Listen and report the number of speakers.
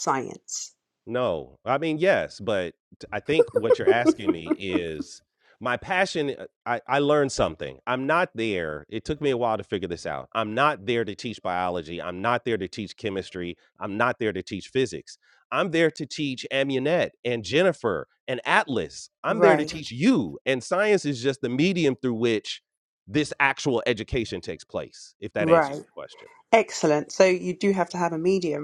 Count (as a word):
two